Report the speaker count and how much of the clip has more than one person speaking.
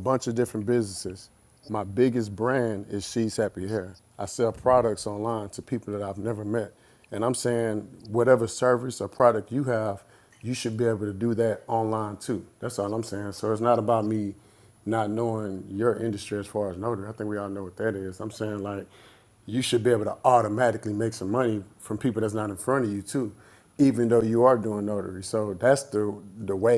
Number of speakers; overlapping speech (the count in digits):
1, no overlap